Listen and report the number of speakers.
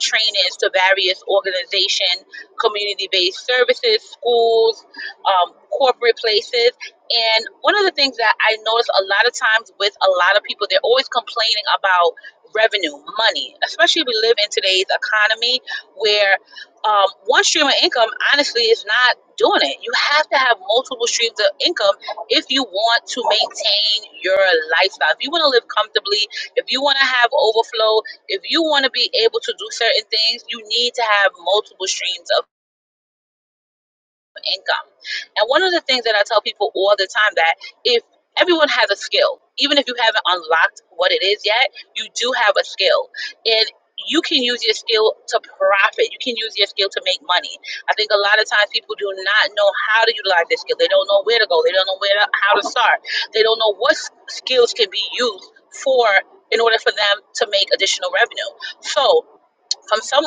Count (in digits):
1